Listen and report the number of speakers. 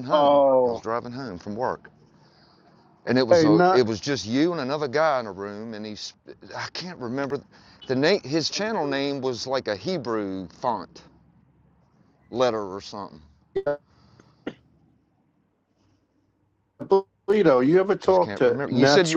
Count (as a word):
two